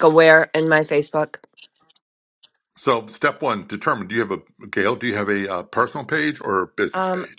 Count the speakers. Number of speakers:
2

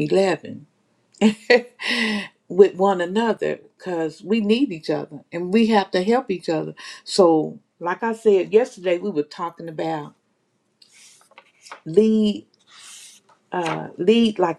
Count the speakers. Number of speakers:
1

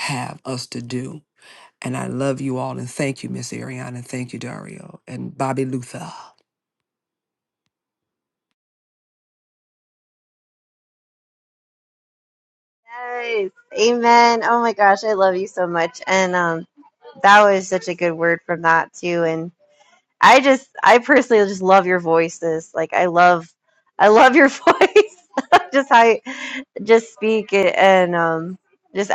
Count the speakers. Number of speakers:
2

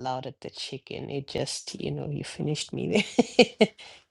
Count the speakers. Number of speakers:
1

